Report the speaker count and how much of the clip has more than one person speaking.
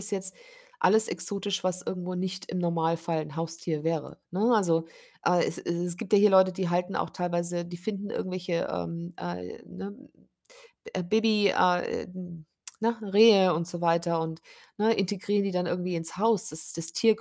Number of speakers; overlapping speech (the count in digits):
1, no overlap